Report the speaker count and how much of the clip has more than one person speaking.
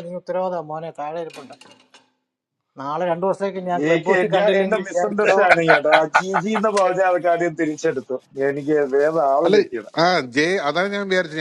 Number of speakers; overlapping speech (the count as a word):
three, about 16%